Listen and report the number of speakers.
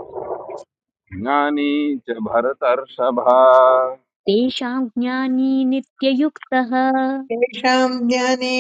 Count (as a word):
three